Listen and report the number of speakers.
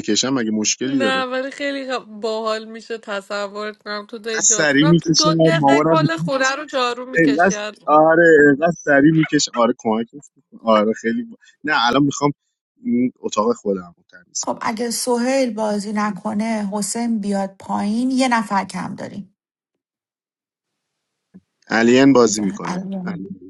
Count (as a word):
three